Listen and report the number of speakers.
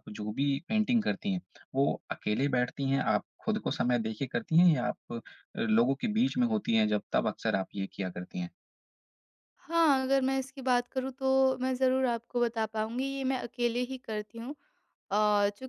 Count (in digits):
2